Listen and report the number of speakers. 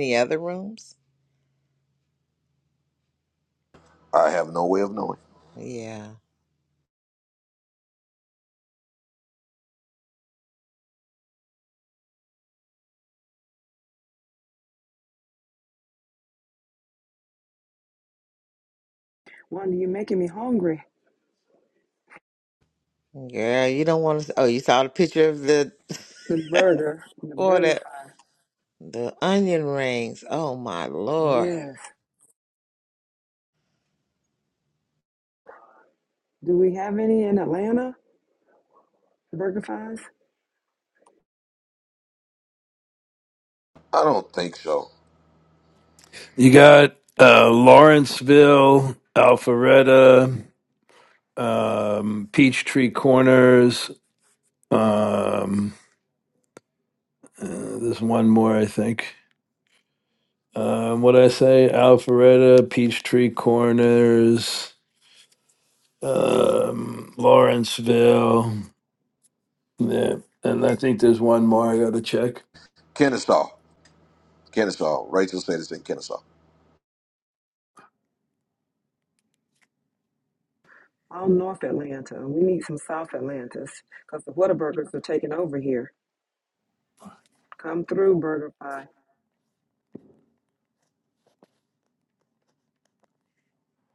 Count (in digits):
4